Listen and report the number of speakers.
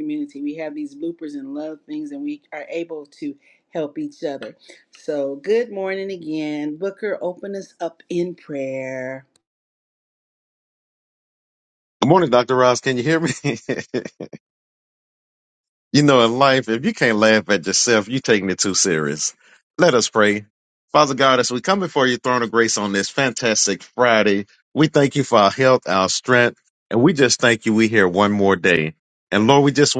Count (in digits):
2